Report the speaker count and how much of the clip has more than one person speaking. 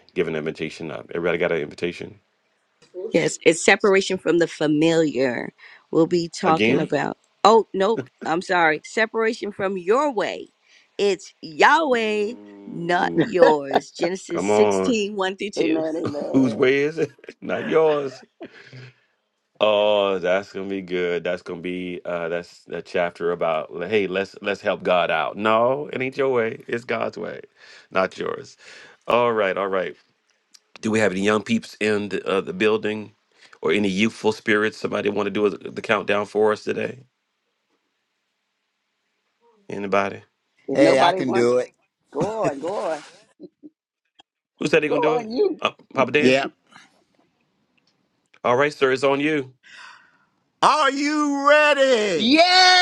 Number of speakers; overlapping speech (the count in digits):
4, about 8%